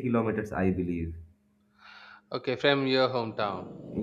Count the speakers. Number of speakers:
2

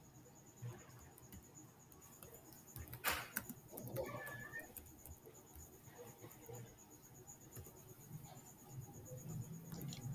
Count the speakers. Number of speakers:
0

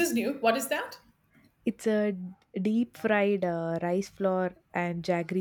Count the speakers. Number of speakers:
2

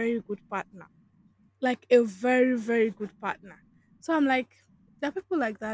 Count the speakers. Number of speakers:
1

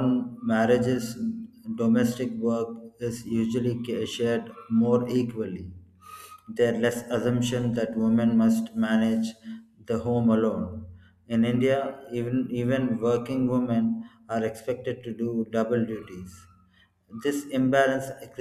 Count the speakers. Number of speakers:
1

